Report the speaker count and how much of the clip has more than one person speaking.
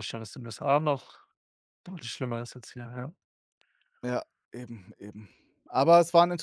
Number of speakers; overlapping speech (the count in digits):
2, no overlap